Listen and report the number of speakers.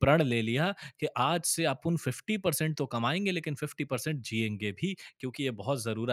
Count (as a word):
one